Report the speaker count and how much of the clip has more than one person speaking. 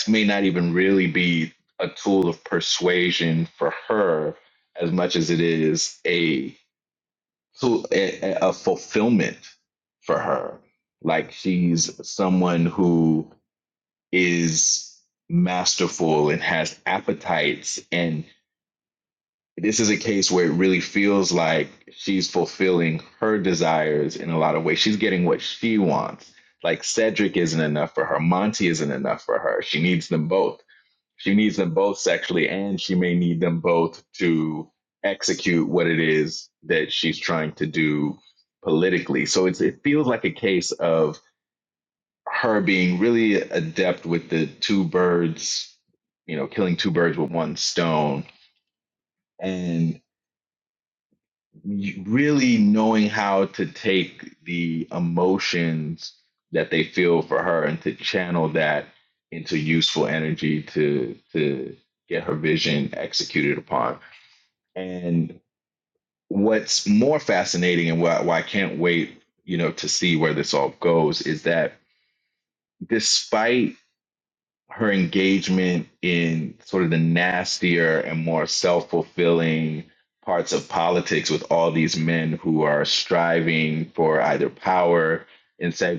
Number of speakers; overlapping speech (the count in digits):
1, no overlap